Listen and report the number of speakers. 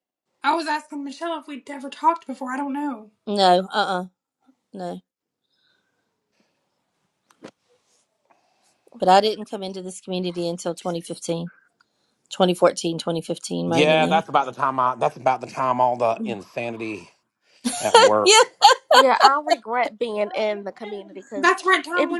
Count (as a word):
four